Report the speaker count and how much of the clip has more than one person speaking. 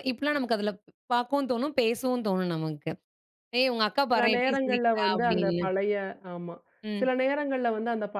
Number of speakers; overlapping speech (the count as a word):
two, about 19%